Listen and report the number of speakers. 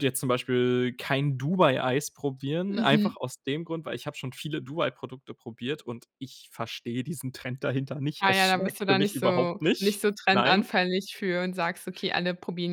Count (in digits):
2